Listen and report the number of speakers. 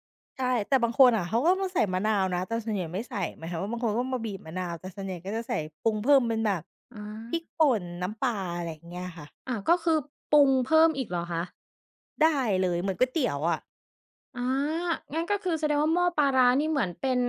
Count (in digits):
2